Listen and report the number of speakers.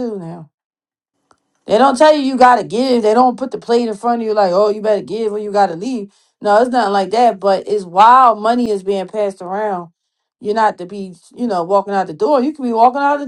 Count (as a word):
one